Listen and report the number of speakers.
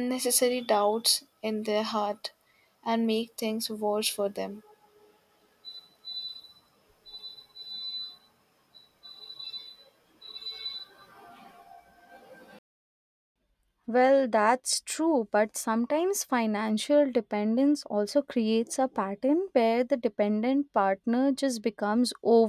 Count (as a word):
two